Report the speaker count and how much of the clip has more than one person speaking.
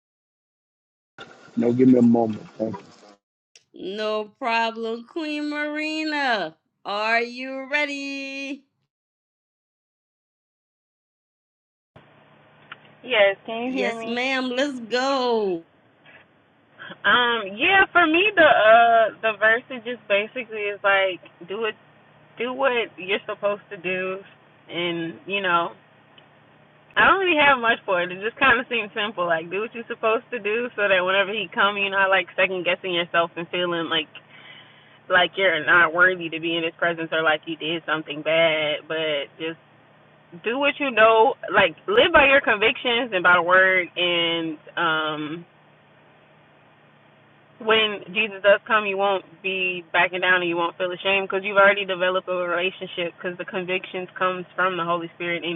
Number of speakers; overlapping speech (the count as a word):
three, about 1%